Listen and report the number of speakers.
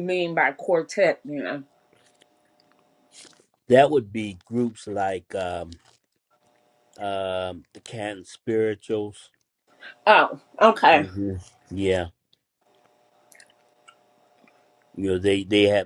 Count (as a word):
two